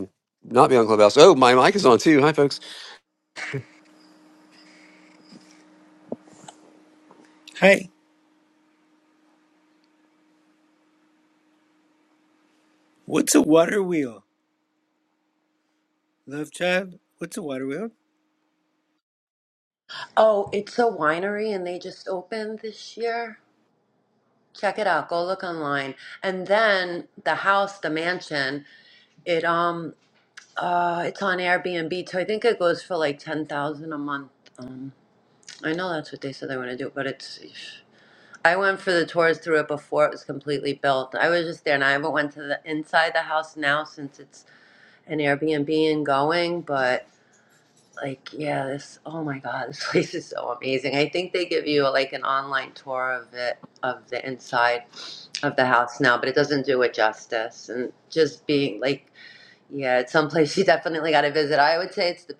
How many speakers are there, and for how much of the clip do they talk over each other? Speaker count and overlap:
3, no overlap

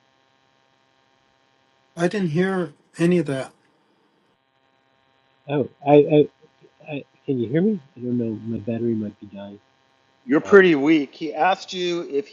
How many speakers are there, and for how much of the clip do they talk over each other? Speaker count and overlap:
3, about 2%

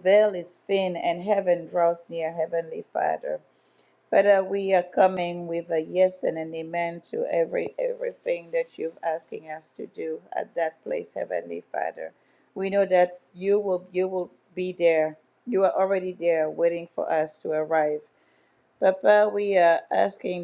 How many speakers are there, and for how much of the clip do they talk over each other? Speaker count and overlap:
1, no overlap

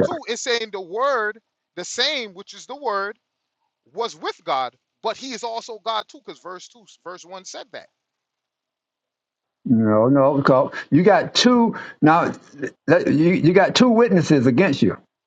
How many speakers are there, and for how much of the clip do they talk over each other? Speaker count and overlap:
2, no overlap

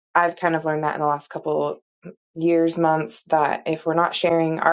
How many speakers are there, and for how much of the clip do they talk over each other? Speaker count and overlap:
1, no overlap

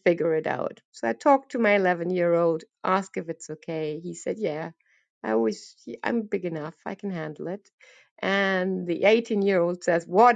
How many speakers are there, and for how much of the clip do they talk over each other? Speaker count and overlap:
1, no overlap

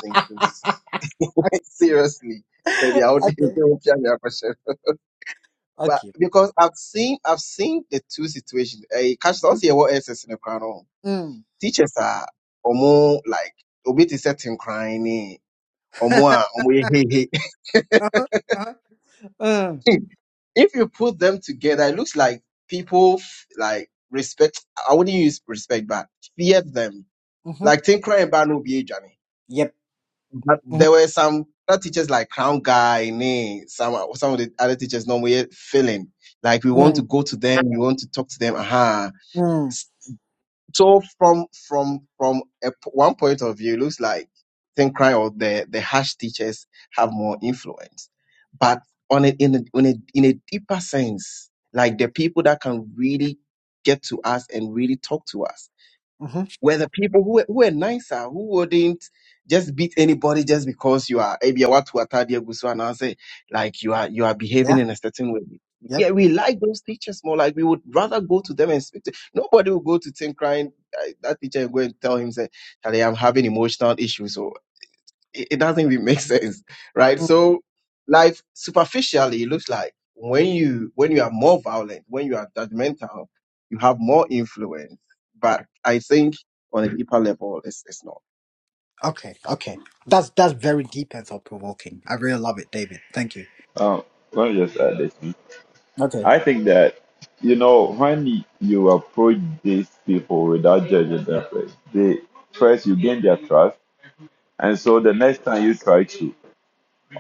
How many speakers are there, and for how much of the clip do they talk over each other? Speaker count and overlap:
3, about 2%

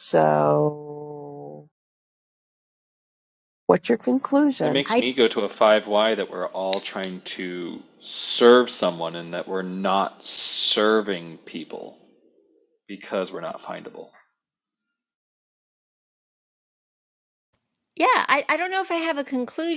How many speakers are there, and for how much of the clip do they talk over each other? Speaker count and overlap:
3, about 2%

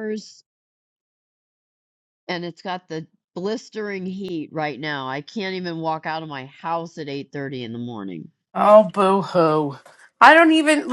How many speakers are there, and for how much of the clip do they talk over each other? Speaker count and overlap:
2, no overlap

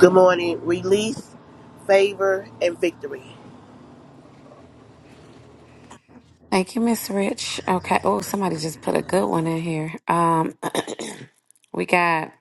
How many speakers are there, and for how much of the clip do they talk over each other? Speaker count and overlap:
2, no overlap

